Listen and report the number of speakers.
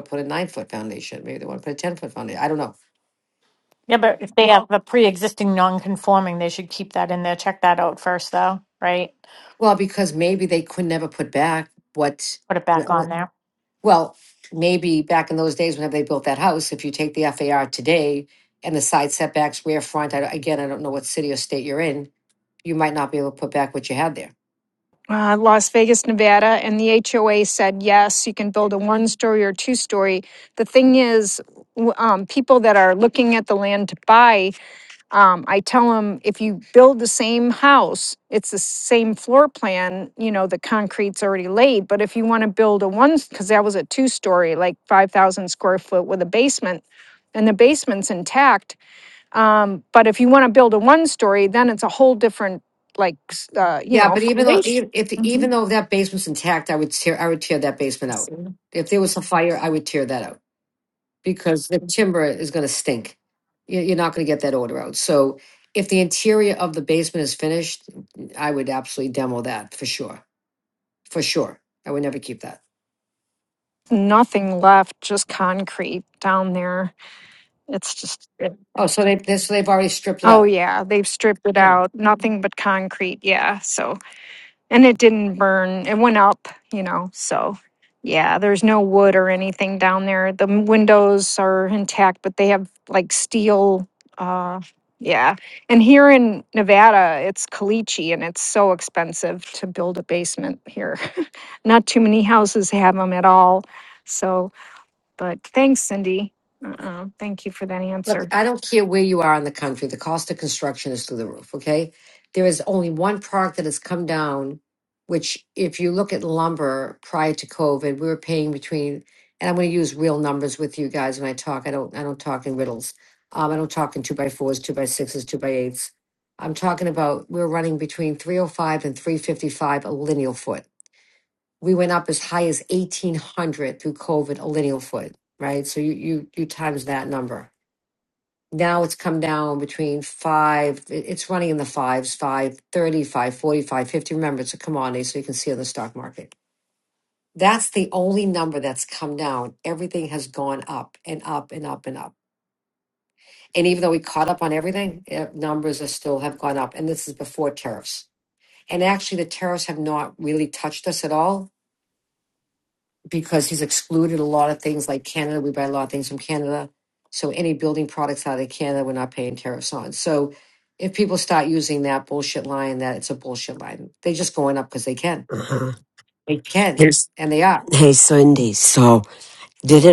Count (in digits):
4